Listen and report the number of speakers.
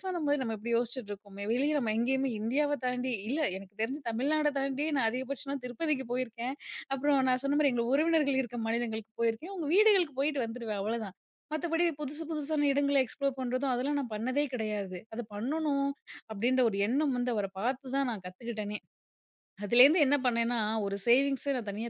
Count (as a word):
one